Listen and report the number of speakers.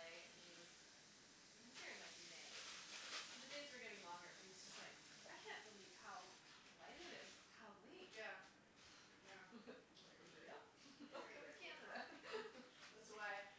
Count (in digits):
2